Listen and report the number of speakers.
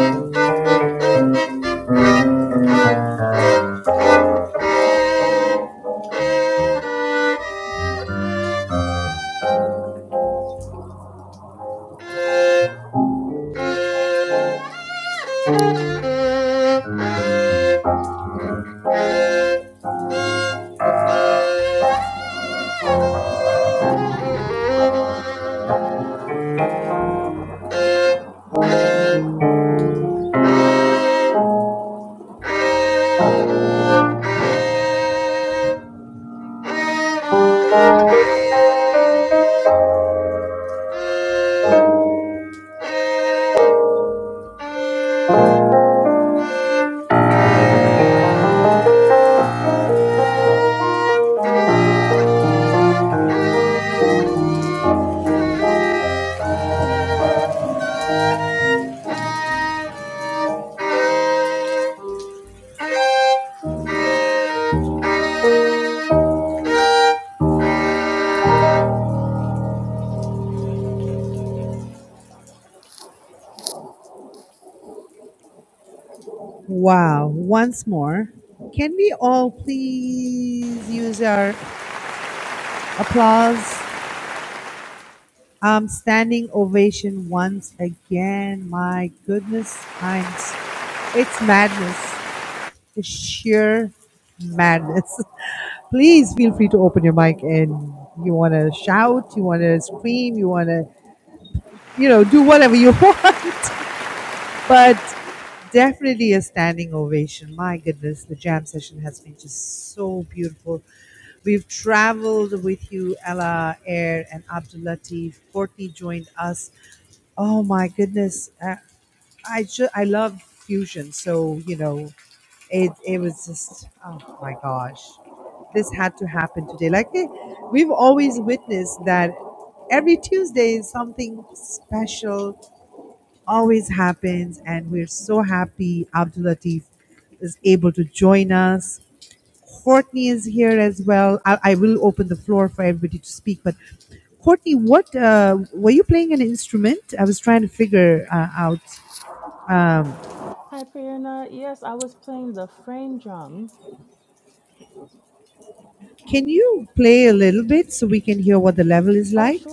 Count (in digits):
3